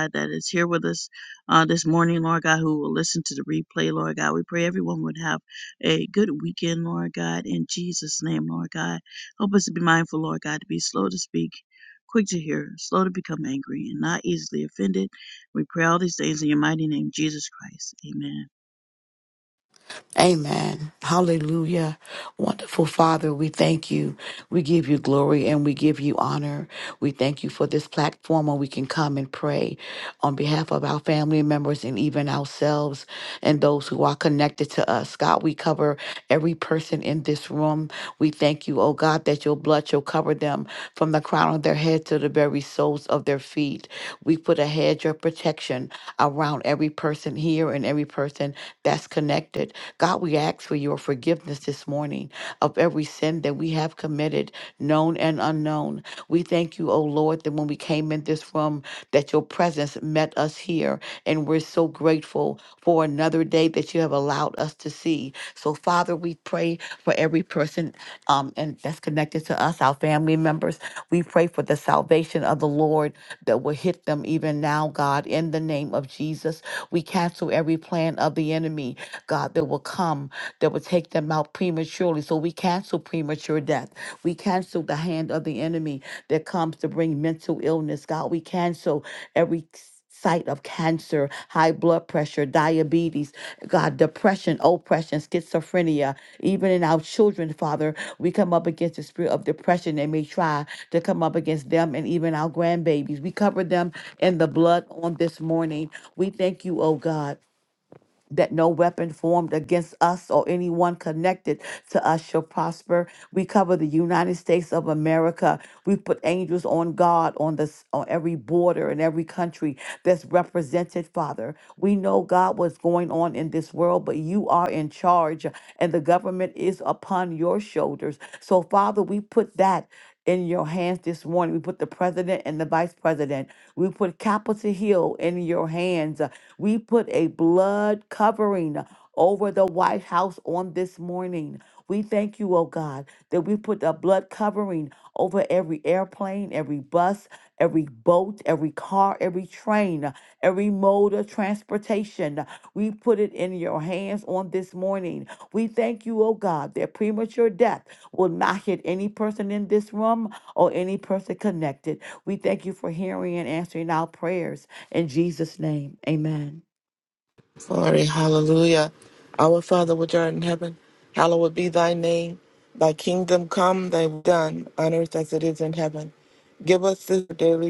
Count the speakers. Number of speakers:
3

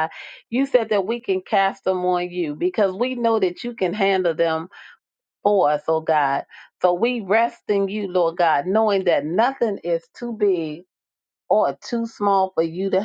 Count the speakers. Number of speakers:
1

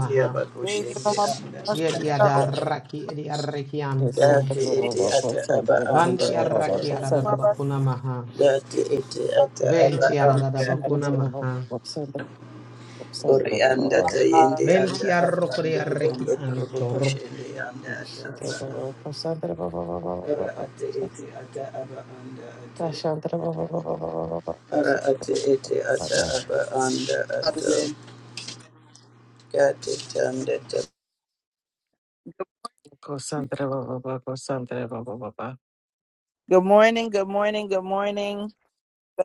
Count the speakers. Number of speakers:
4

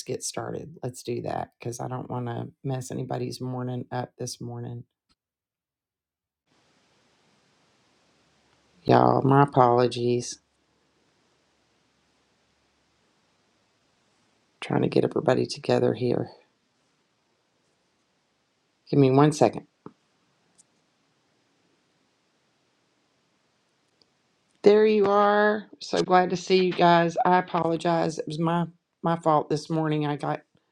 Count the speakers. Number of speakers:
1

